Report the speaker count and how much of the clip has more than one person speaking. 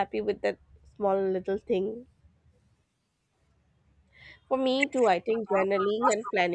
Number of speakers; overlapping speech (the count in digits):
1, no overlap